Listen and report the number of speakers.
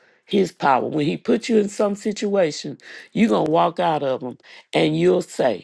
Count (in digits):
1